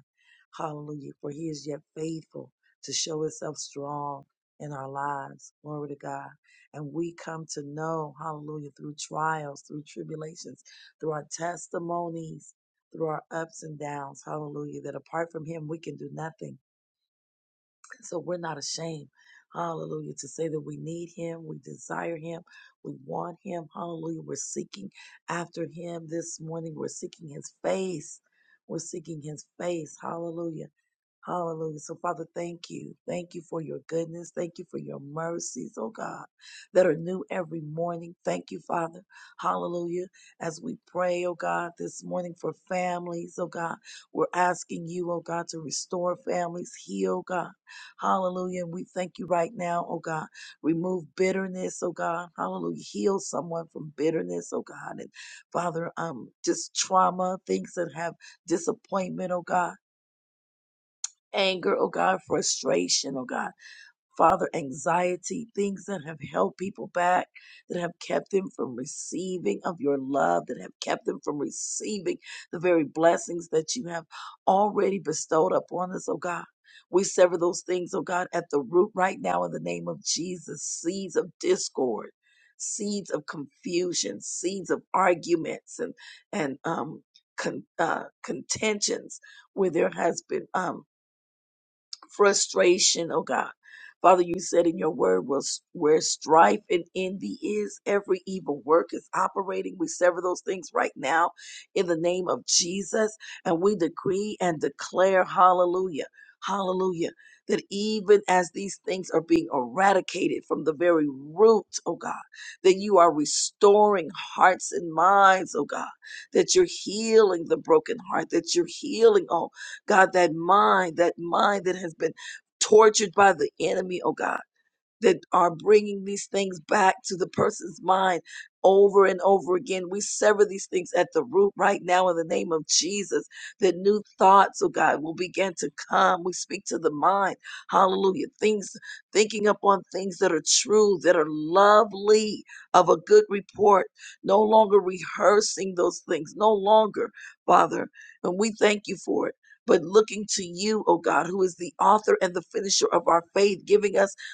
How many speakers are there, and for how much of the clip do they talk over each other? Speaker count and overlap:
1, no overlap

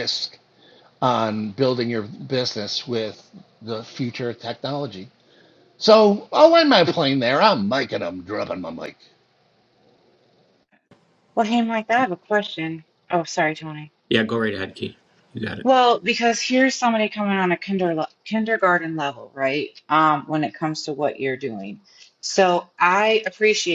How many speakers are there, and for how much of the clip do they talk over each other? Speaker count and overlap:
3, no overlap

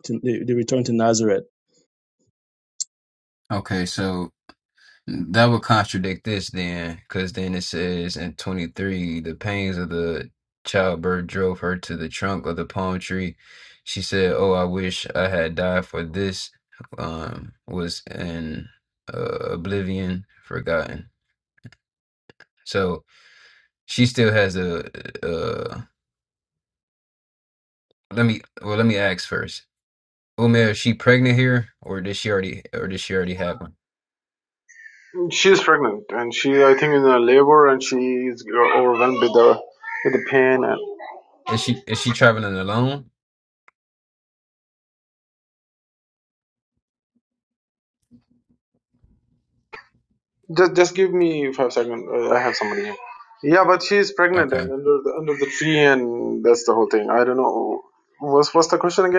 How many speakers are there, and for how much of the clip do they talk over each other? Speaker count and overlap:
3, about 1%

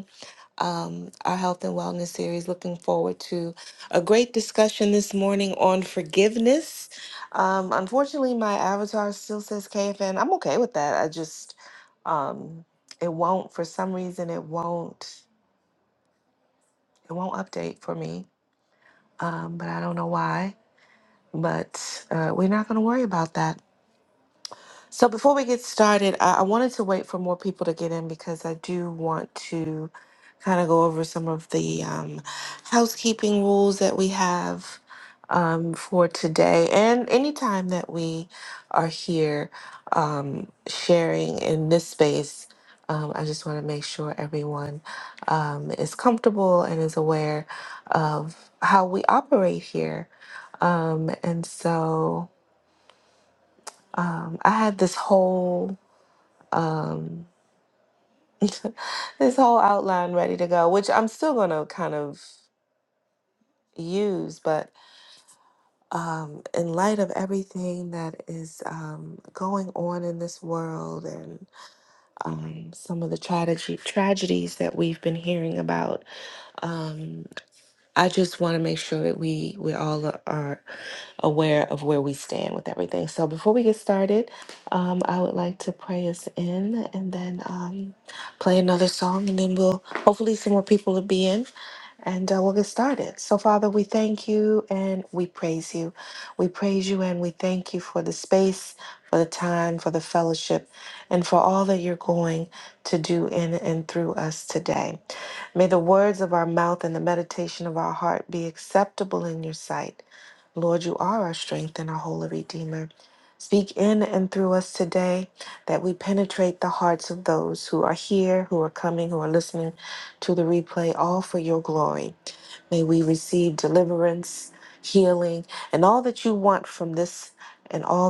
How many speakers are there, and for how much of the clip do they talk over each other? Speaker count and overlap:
1, no overlap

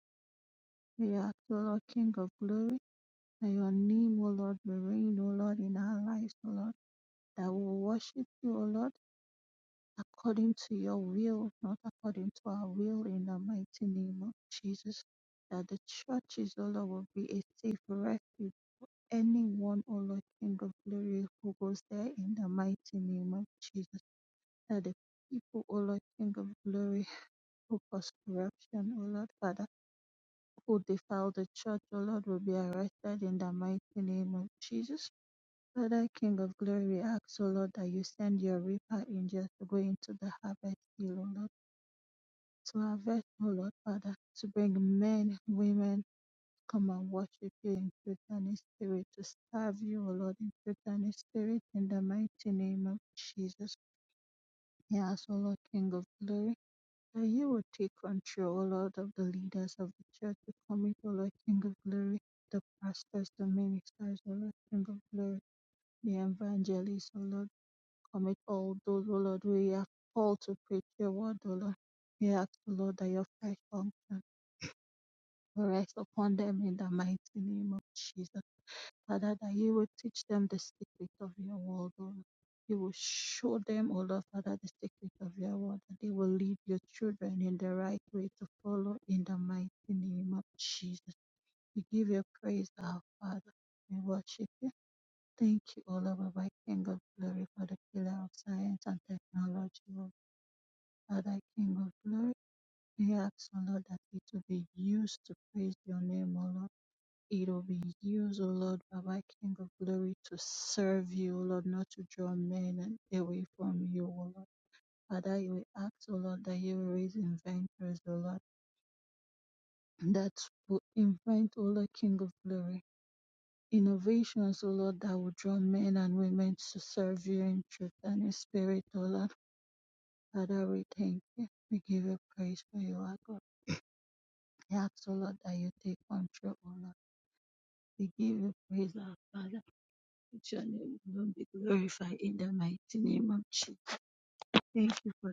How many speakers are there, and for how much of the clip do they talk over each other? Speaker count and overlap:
1, no overlap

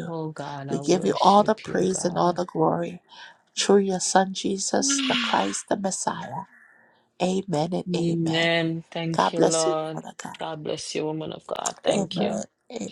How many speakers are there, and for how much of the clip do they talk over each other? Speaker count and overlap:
2, about 33%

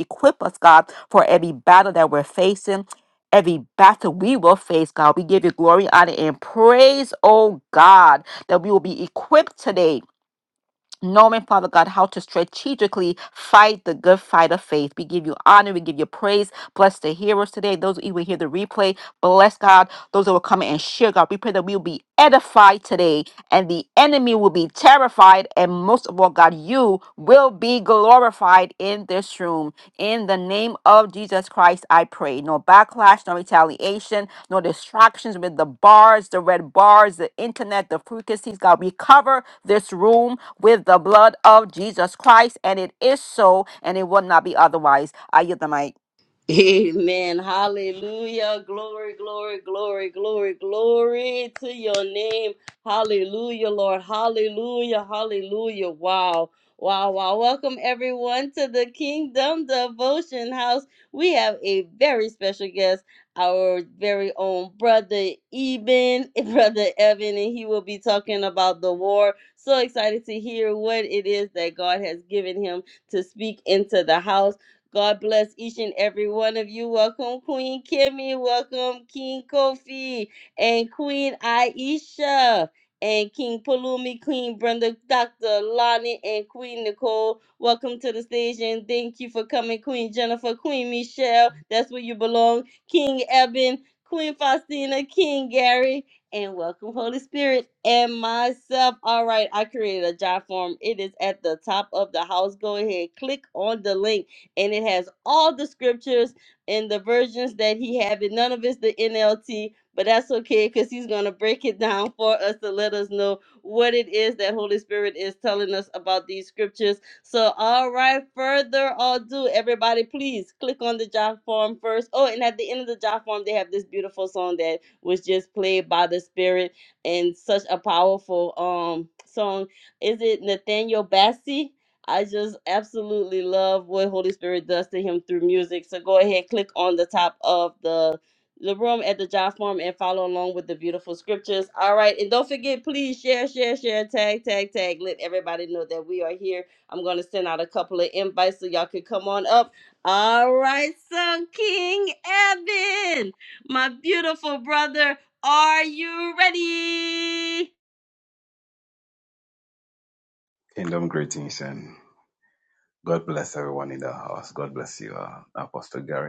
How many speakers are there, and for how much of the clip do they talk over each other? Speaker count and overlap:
3, no overlap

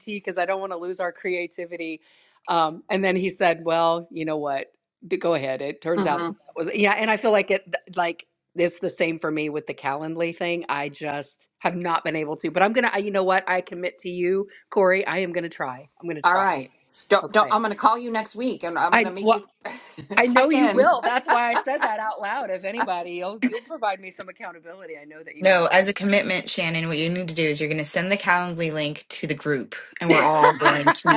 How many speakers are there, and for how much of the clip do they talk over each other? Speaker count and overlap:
3, about 7%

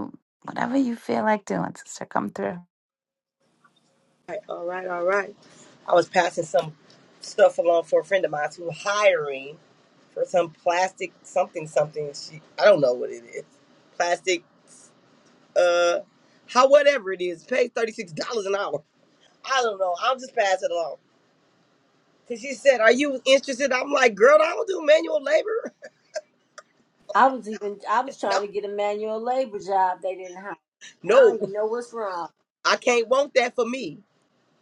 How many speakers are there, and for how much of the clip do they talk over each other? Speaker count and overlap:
3, about 2%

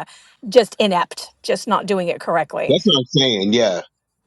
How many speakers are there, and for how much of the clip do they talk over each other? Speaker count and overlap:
2, about 1%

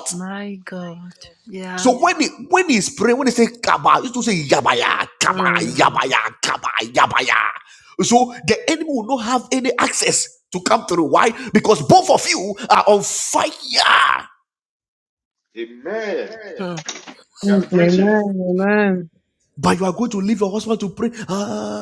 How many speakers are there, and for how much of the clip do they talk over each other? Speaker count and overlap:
4, about 8%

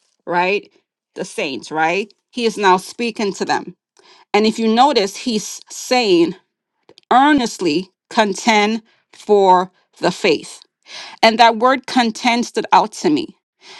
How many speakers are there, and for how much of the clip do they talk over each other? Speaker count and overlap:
1, no overlap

